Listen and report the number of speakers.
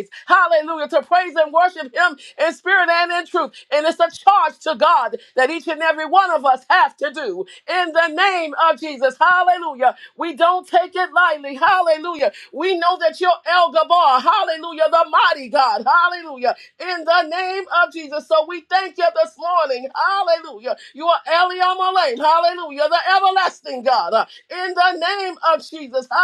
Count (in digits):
1